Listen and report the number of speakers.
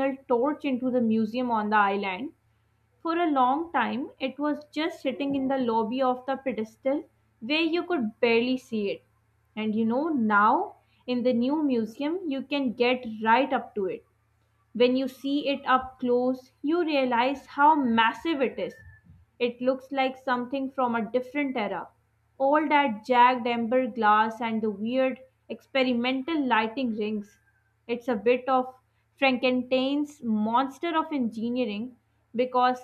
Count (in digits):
1